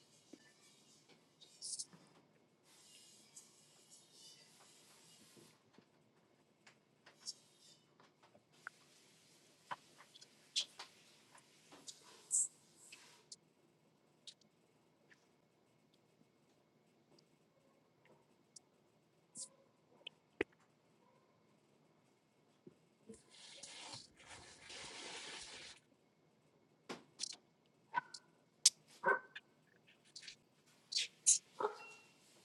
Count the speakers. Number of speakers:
zero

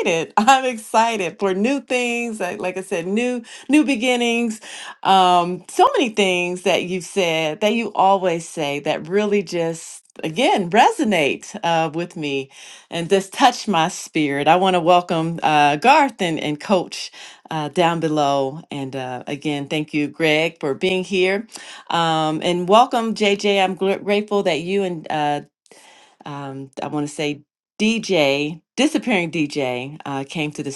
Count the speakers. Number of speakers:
one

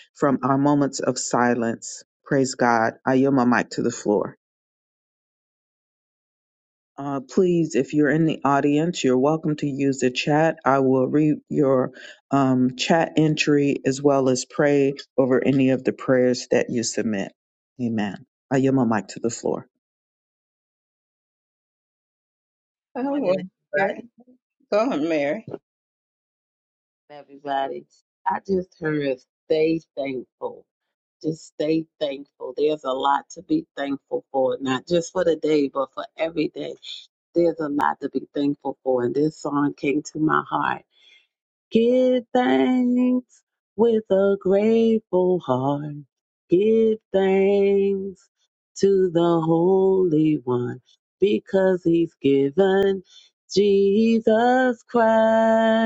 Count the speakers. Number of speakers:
three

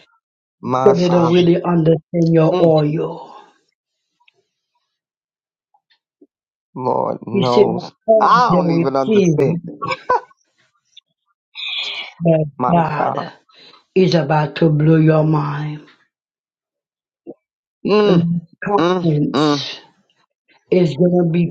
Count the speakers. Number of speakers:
two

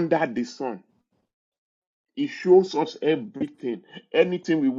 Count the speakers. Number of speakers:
one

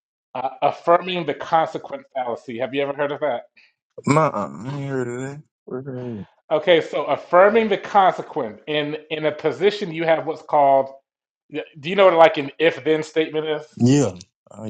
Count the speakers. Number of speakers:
two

